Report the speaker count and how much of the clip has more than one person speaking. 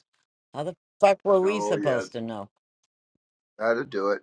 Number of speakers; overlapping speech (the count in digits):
2, about 16%